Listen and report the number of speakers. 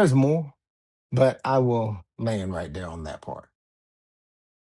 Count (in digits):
1